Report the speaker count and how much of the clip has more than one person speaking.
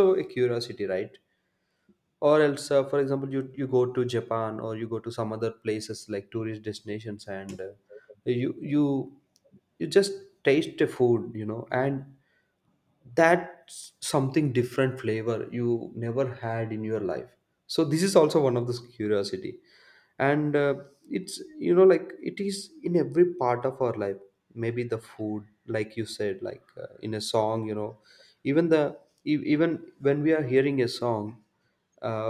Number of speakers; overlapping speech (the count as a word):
one, no overlap